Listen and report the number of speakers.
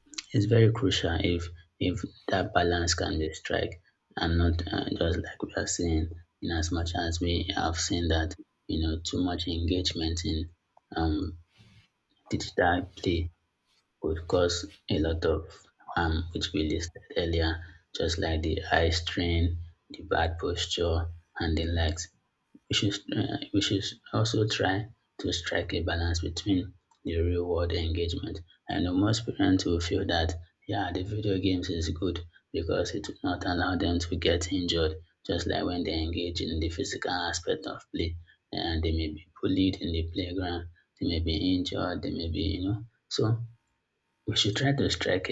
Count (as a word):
one